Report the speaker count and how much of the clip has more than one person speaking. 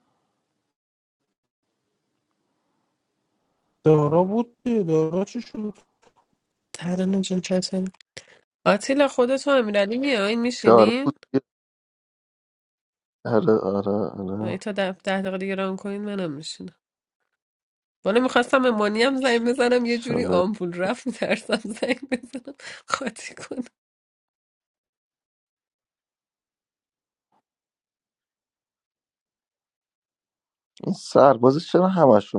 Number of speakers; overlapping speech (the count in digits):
3, about 3%